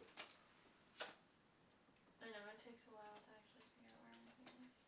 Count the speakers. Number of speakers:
1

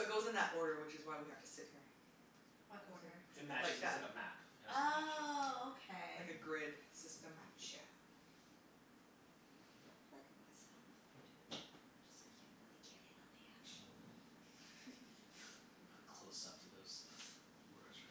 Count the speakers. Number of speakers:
3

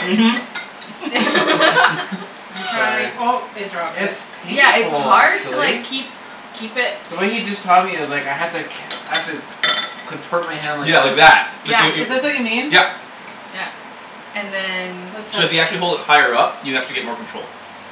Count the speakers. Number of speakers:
4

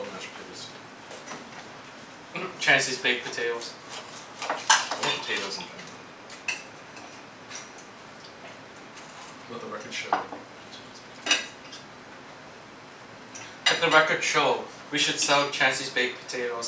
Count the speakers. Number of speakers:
2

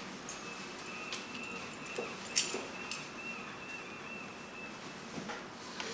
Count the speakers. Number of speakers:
0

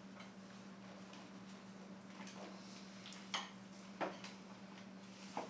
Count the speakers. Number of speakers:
0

